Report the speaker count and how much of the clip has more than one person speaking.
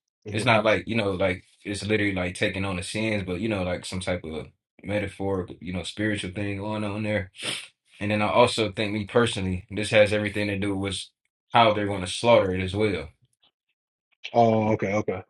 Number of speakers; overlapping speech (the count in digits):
2, about 1%